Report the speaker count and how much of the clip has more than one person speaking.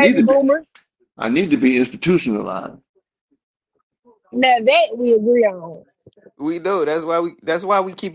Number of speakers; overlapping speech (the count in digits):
3, about 5%